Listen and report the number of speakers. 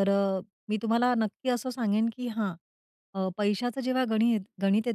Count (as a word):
one